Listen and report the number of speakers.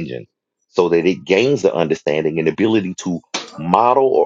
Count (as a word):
one